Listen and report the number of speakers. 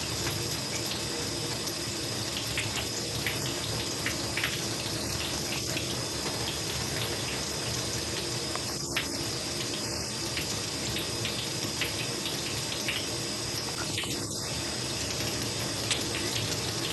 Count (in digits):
0